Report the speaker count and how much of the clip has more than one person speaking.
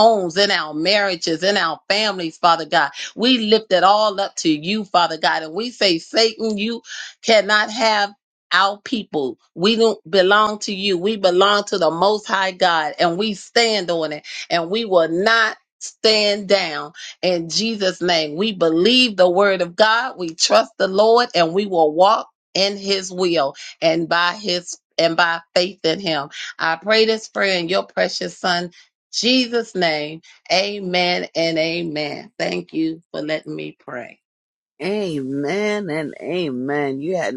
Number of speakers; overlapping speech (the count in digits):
2, no overlap